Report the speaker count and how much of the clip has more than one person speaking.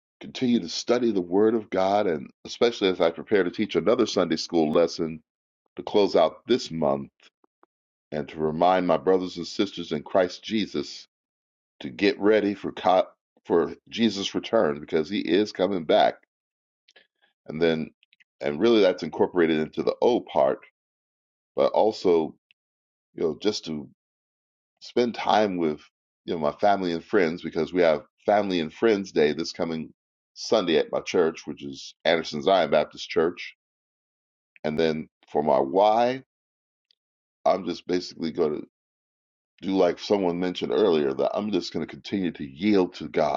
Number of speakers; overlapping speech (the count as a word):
one, no overlap